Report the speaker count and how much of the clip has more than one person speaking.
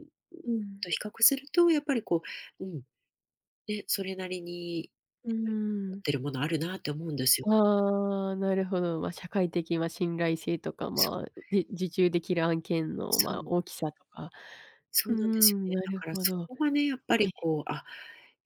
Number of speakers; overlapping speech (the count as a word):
two, about 15%